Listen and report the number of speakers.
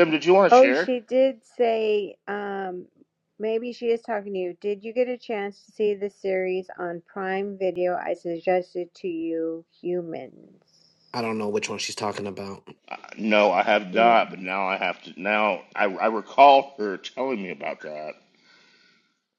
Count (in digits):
3